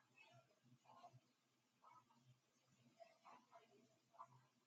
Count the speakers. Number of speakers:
0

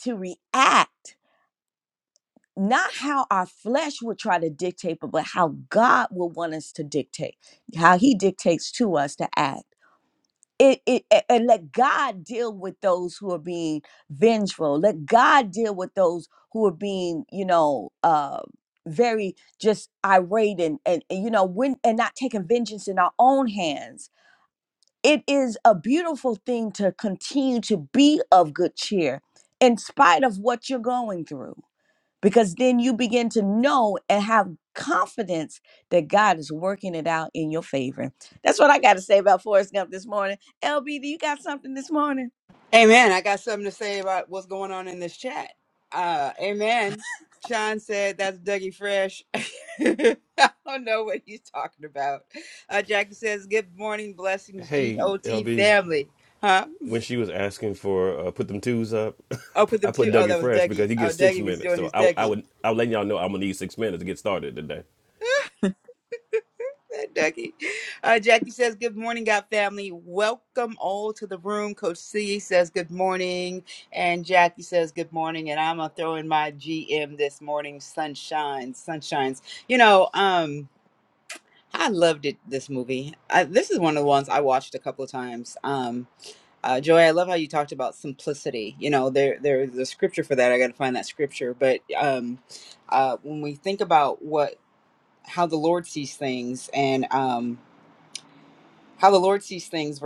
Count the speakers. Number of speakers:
3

